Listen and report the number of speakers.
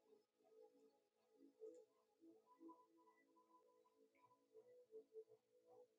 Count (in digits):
0